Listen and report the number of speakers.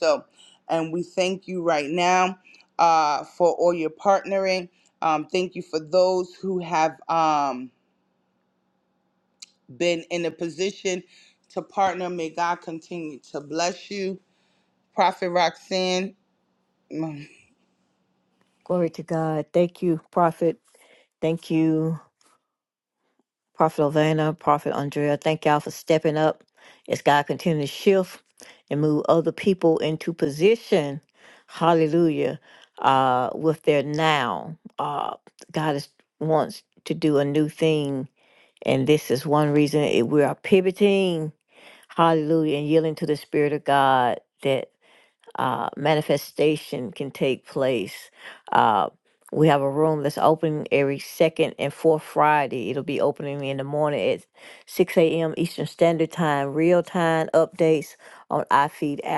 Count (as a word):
two